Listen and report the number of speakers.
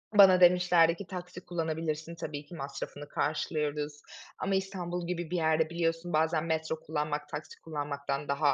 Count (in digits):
1